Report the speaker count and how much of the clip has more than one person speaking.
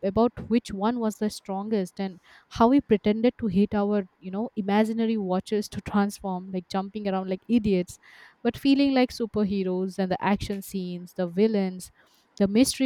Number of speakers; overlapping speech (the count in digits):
1, no overlap